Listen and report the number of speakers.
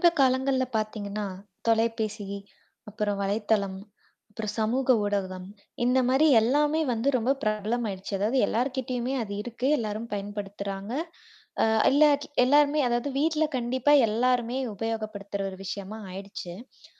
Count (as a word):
one